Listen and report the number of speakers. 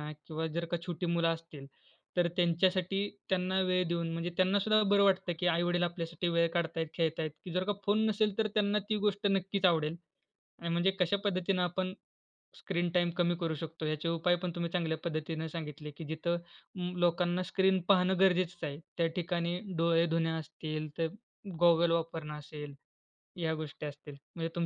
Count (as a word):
one